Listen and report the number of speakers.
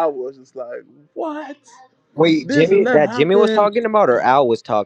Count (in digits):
2